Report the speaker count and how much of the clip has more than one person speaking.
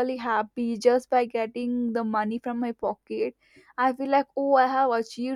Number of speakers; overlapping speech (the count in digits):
1, no overlap